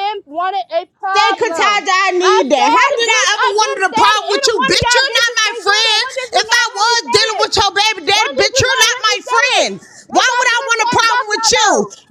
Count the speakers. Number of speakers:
two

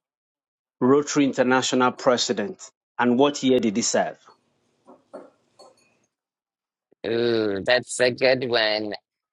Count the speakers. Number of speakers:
two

